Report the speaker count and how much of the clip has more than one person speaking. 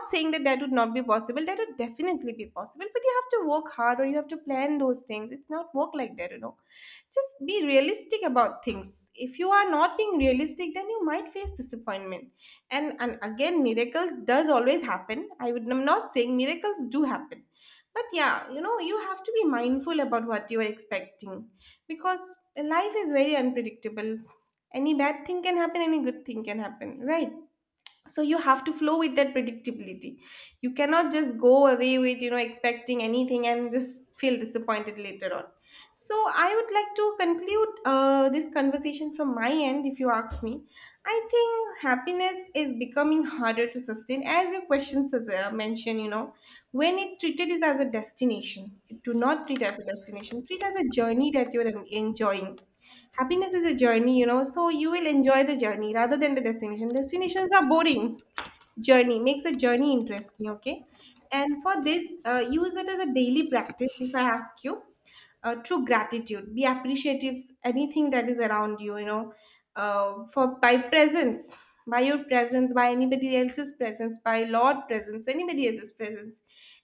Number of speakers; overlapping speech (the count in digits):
1, no overlap